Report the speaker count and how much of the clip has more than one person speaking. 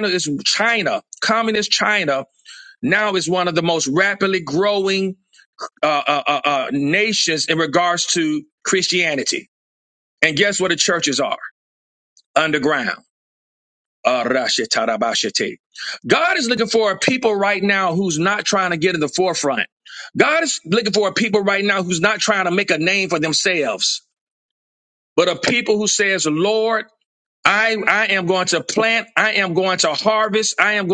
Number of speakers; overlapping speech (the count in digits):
1, no overlap